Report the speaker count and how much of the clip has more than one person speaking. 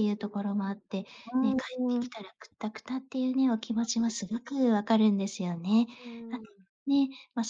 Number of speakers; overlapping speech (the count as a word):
two, about 13%